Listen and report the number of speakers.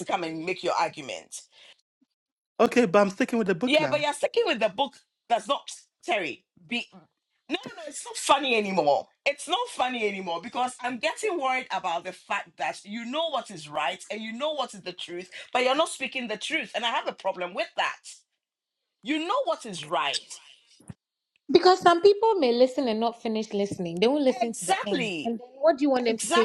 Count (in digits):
3